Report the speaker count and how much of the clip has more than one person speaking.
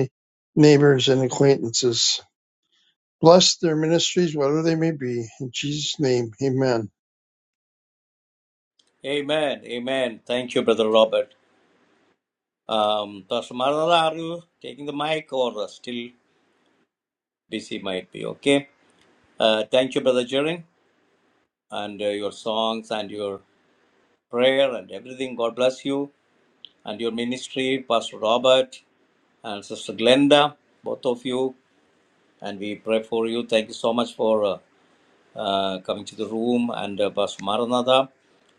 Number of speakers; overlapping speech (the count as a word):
two, no overlap